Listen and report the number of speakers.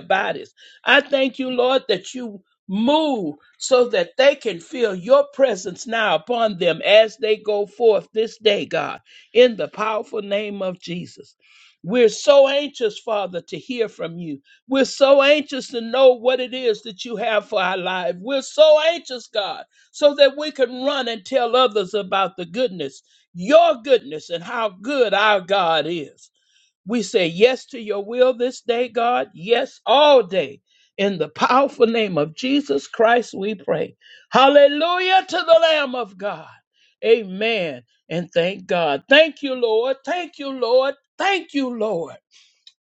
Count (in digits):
1